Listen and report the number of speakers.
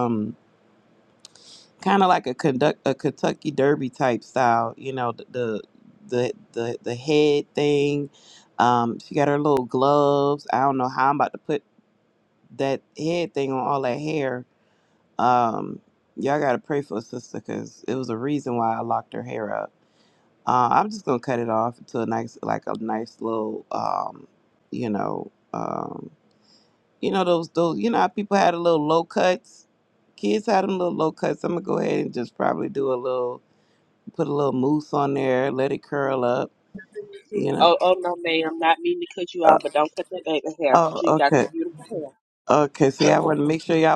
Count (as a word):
two